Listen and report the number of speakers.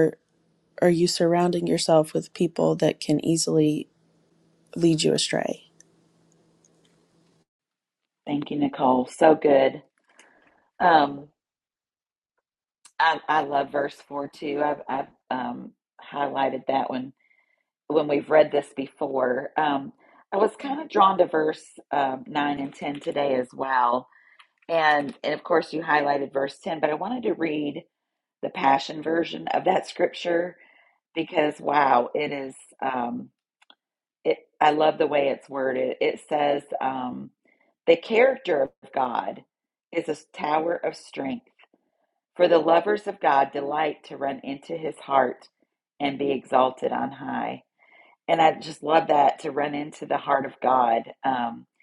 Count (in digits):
2